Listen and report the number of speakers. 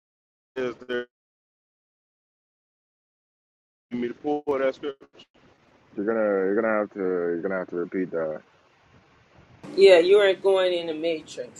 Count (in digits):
3